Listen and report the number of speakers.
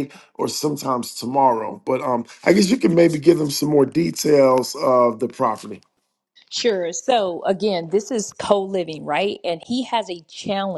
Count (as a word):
two